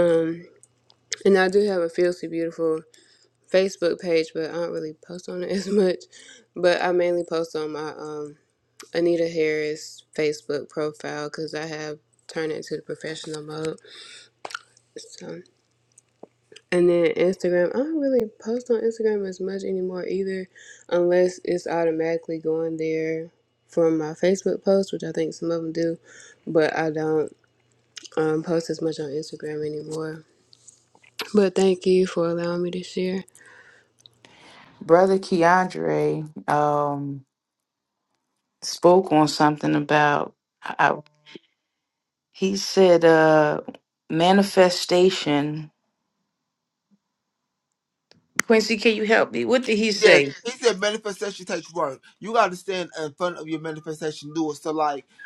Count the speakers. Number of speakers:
3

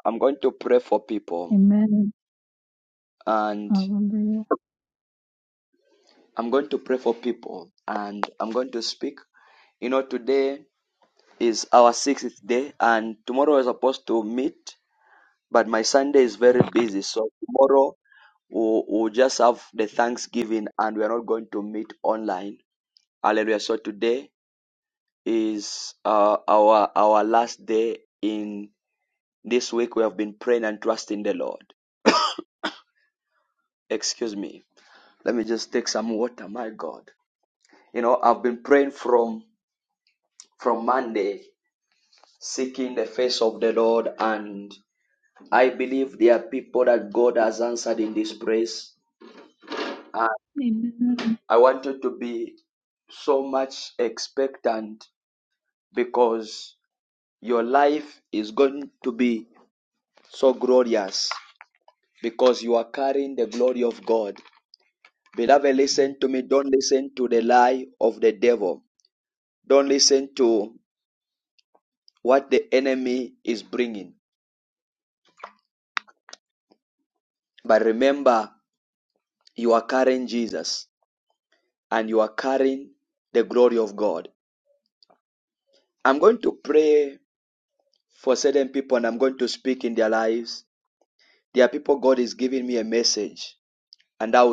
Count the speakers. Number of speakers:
2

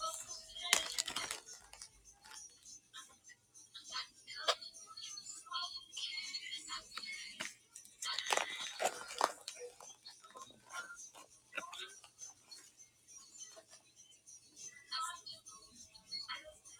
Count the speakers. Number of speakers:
0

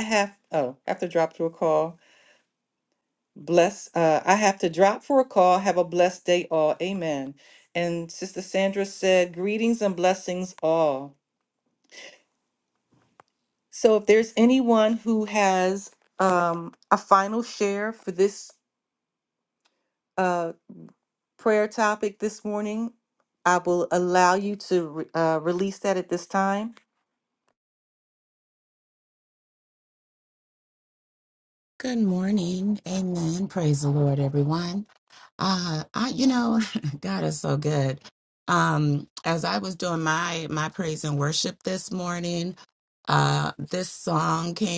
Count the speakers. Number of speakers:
2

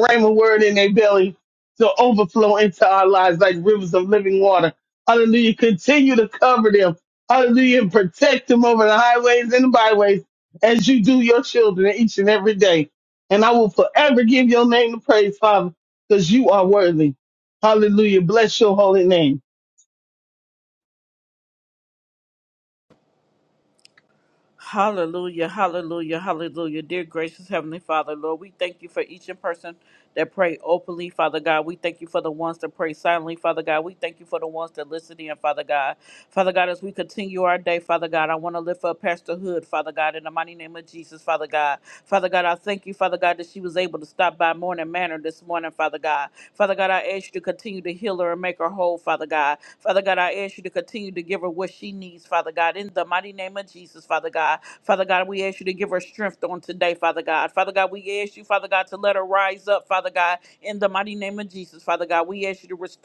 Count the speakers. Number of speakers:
2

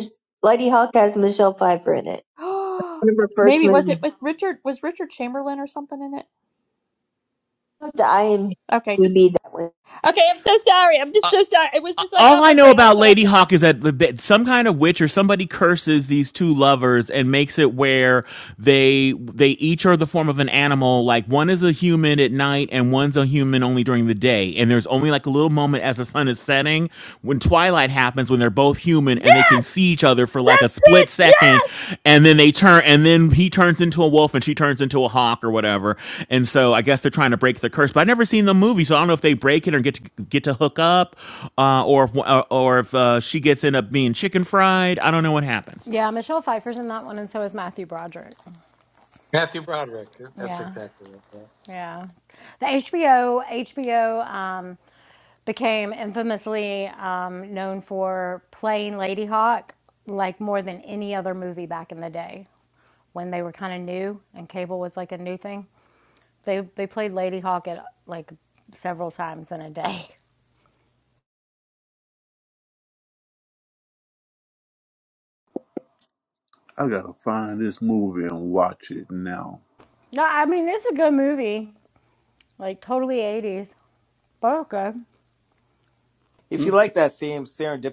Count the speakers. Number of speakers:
7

